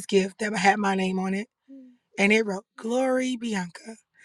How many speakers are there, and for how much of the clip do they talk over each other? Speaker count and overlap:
one, no overlap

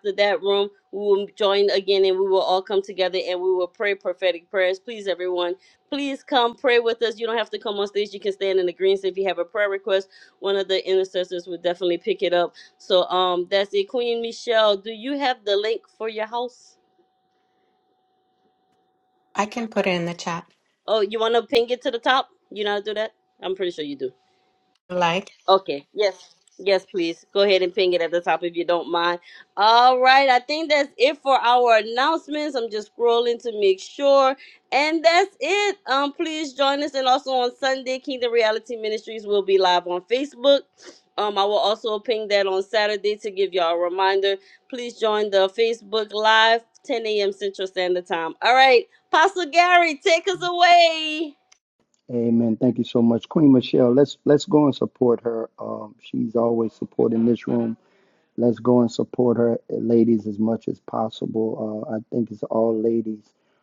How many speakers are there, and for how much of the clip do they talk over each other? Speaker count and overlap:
three, no overlap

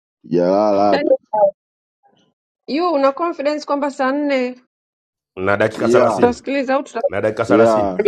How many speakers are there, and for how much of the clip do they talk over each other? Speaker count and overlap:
three, about 14%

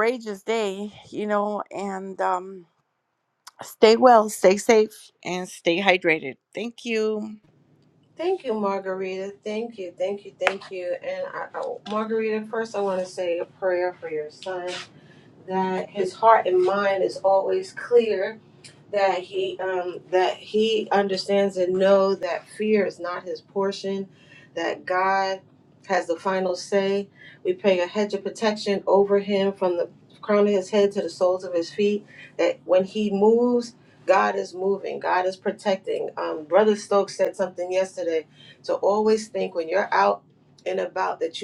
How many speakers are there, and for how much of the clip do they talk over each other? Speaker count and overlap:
two, no overlap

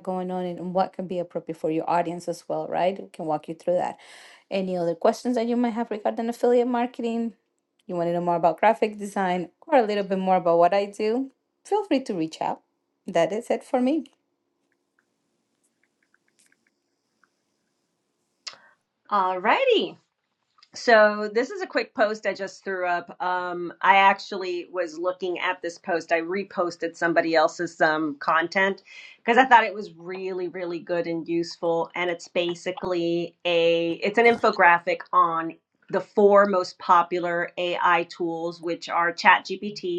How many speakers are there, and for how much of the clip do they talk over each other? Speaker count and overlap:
two, no overlap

